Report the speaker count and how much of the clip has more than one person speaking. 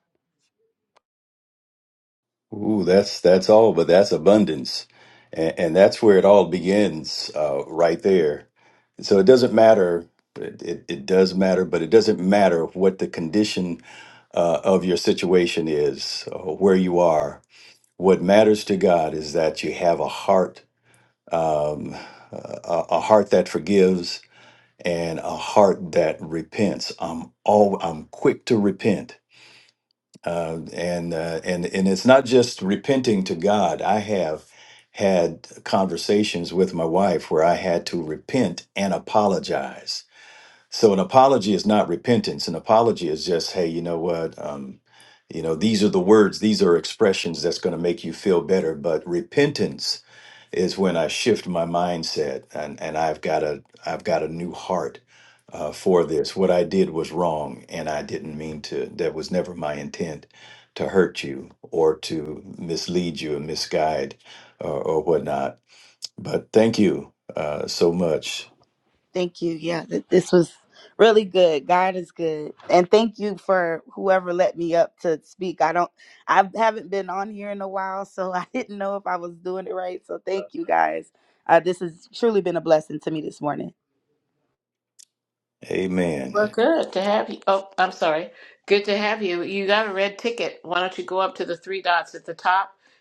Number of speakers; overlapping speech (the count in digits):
3, under 1%